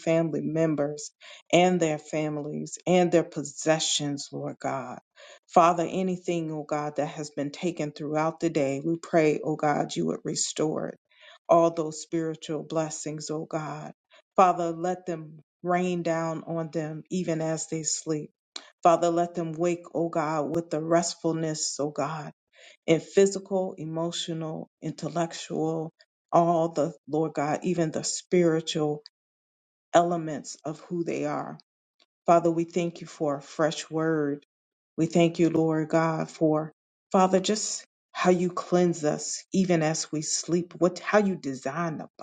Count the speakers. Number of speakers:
1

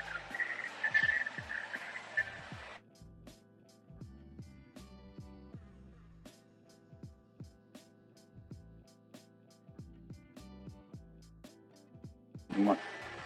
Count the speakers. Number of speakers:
0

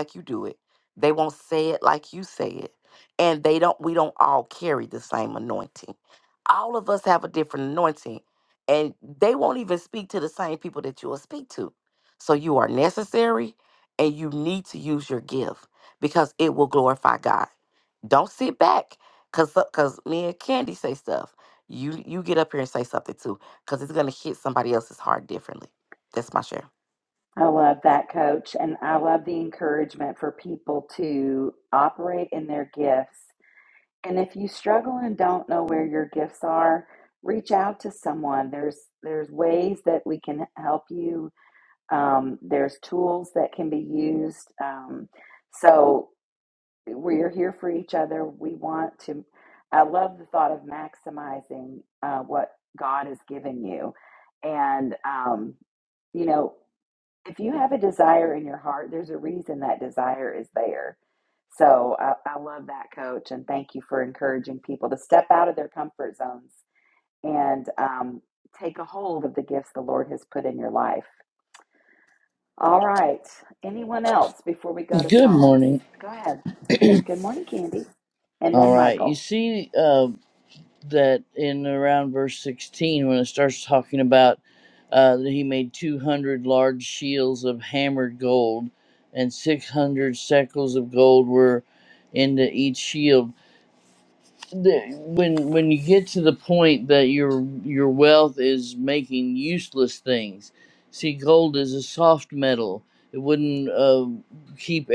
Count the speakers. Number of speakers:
3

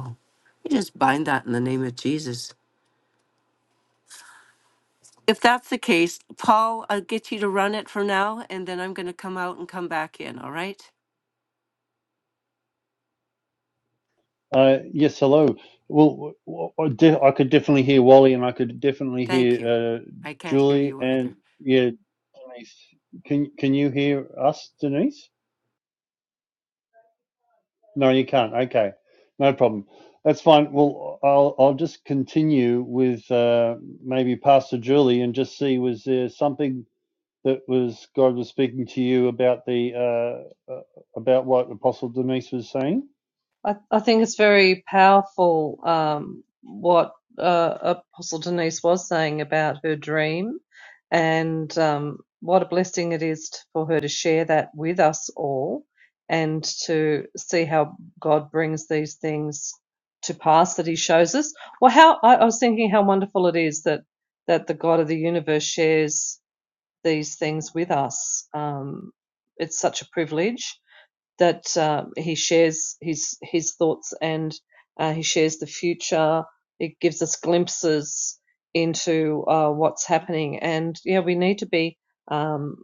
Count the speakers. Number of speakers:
3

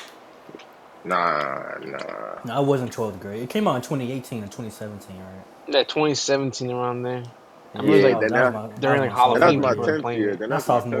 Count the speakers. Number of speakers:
3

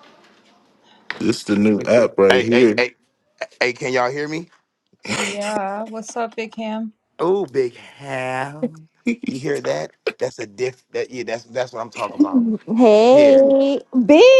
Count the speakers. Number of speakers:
4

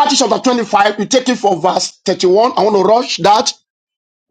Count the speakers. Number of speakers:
1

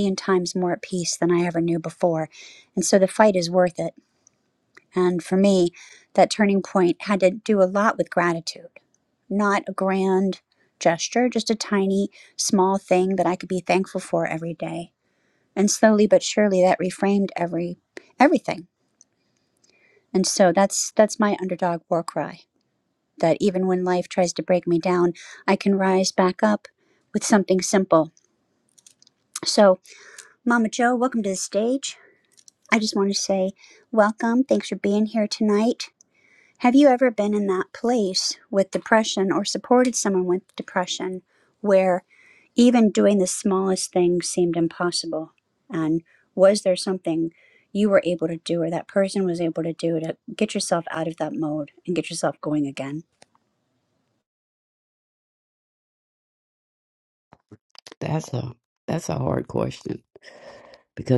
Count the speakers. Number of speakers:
2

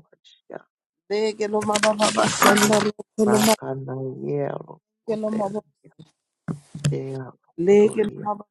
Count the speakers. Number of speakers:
2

